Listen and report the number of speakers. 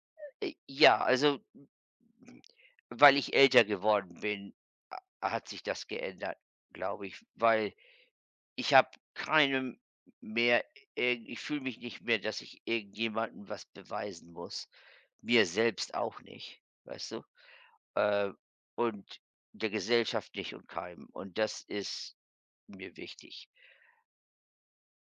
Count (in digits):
1